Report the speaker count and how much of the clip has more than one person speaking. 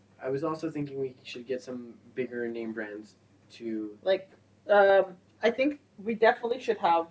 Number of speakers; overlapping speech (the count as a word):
two, no overlap